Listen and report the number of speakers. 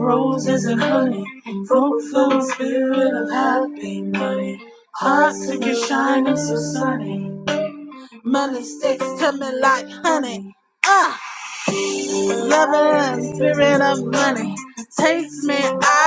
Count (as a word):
one